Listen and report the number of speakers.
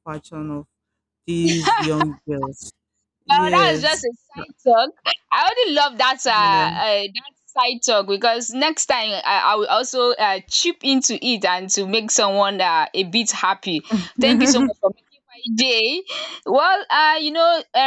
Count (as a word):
two